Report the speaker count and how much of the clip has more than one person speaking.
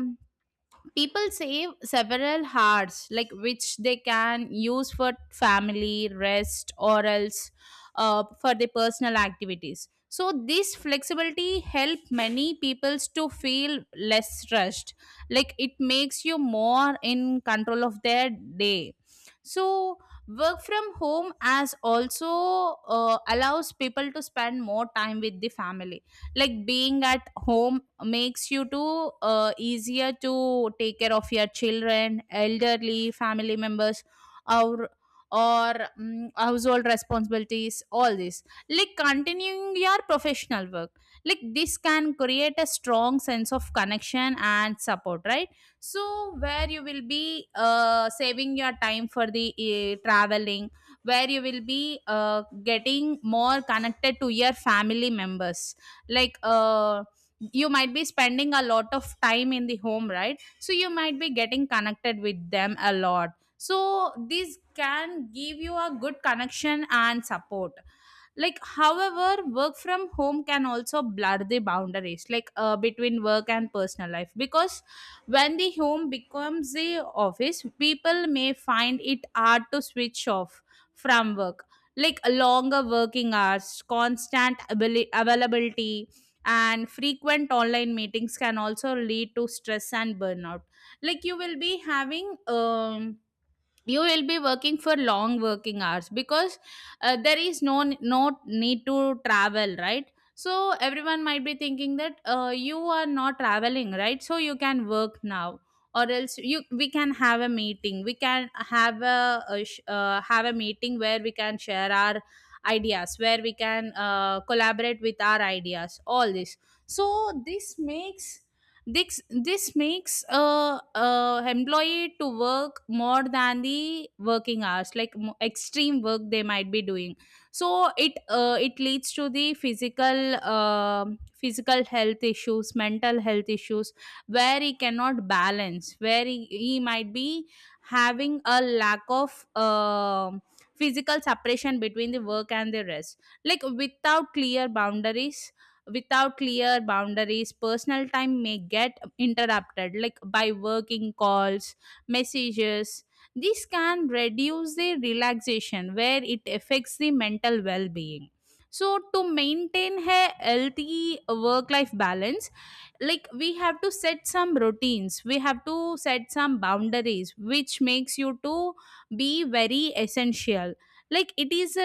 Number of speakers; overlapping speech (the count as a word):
one, no overlap